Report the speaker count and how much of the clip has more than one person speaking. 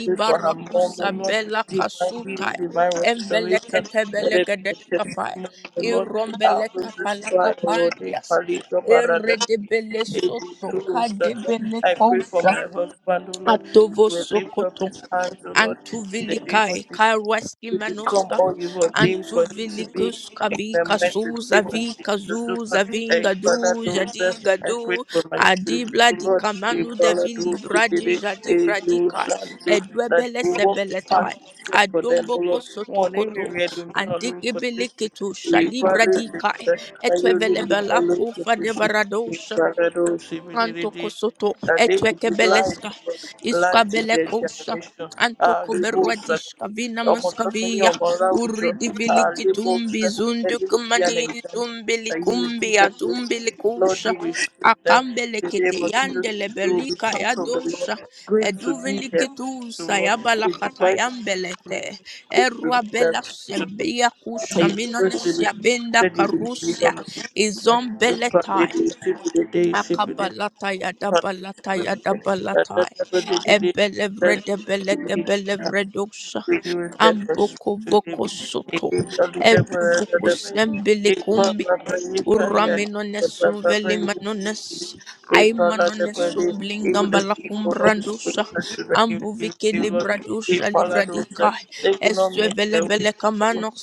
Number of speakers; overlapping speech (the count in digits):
2, about 60%